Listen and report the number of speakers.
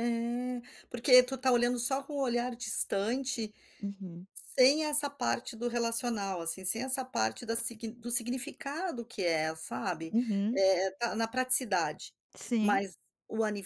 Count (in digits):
2